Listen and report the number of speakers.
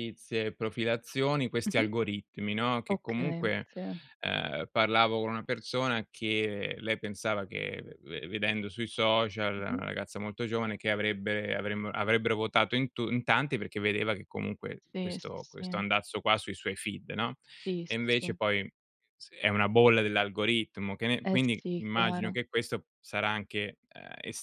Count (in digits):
2